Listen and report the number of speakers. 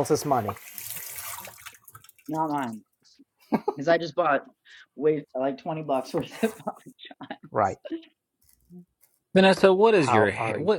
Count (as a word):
three